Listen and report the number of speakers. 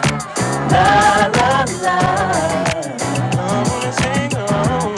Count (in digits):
1